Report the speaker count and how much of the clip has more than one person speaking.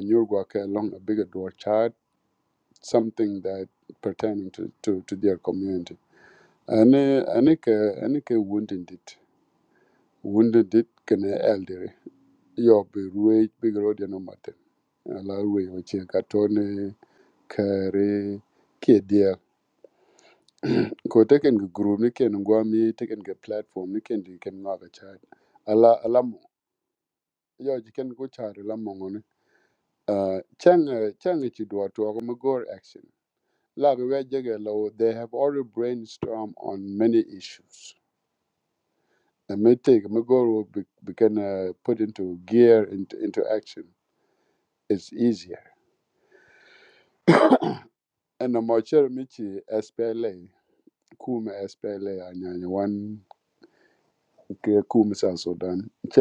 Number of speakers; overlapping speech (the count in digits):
1, no overlap